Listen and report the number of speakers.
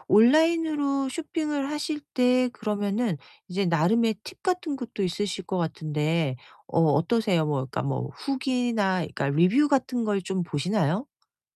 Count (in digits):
1